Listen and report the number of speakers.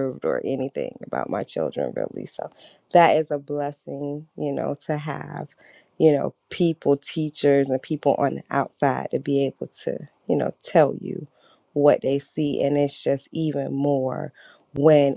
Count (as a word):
one